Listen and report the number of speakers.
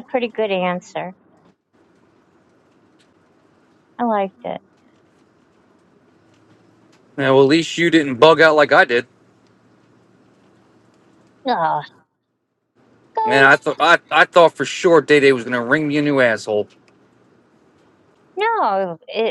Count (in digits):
2